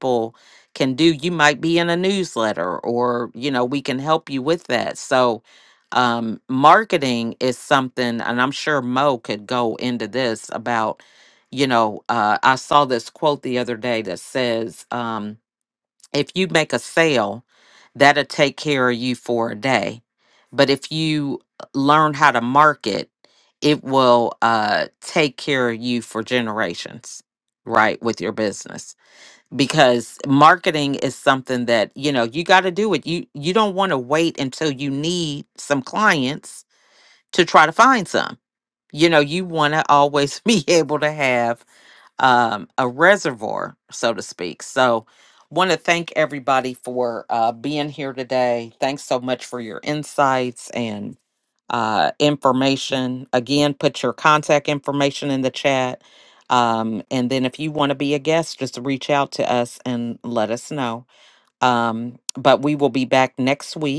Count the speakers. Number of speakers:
1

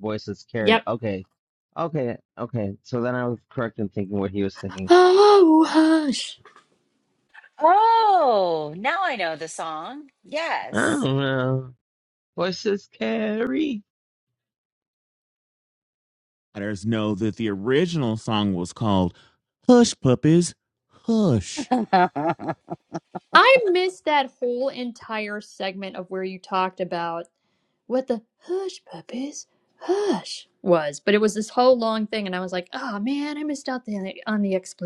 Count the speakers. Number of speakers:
4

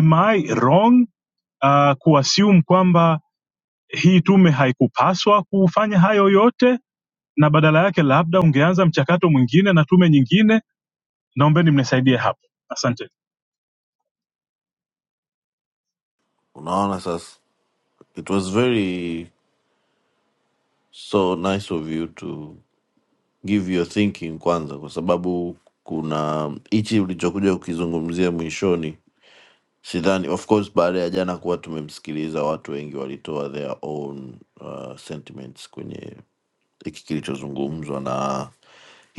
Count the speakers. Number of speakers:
2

